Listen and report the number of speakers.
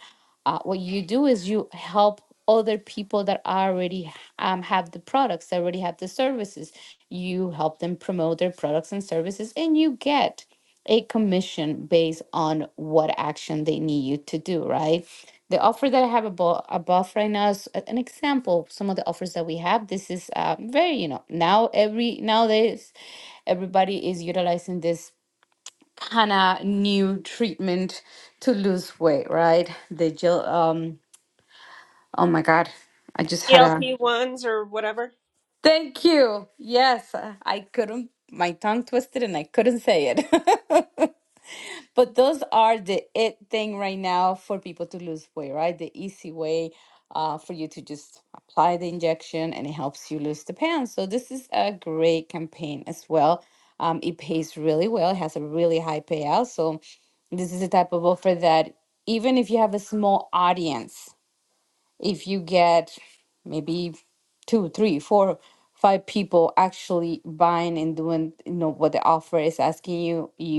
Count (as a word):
two